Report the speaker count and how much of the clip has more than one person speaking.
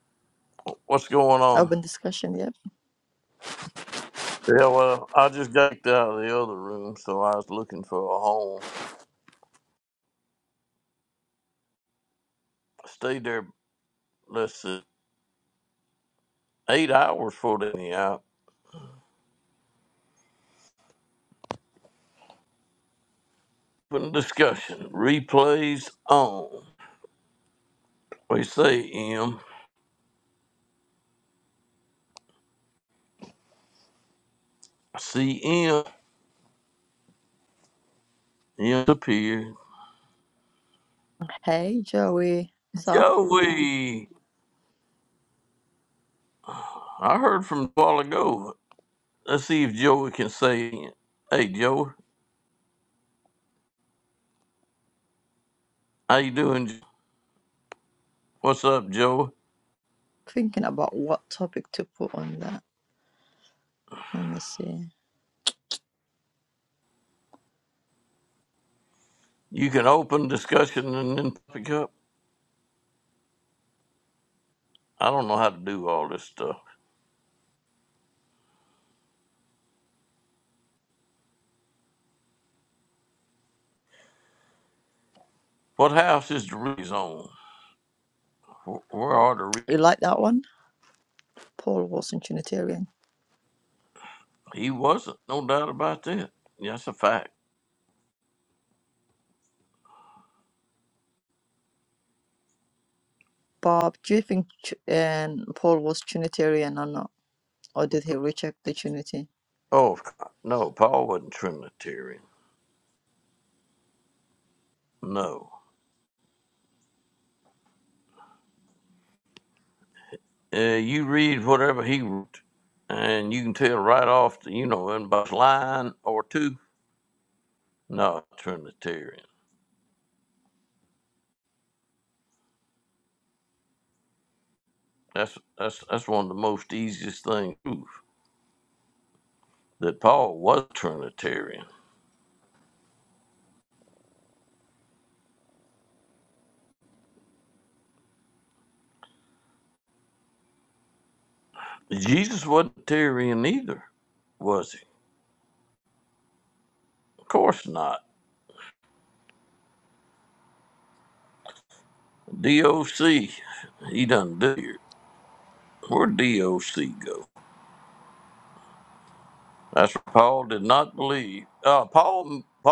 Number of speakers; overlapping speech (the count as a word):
two, under 1%